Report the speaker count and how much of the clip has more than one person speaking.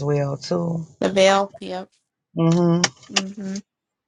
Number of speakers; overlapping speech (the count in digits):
2, no overlap